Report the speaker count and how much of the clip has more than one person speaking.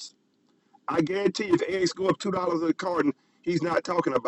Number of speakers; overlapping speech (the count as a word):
one, no overlap